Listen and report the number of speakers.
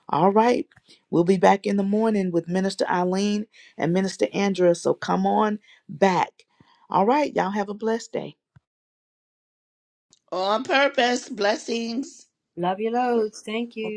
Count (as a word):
three